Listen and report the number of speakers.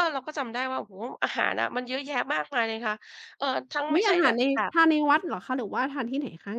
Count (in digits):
2